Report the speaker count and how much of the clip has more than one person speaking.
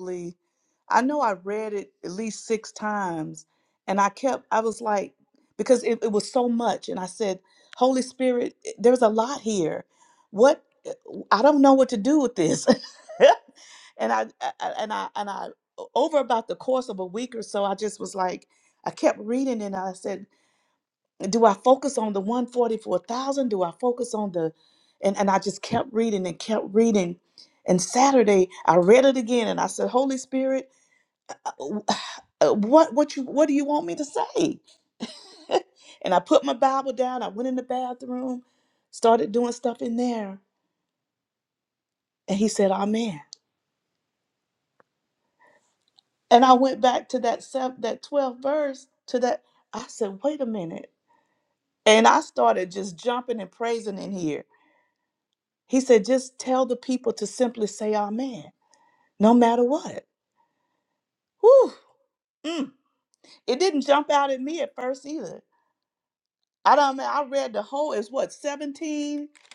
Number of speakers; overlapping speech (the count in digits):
1, no overlap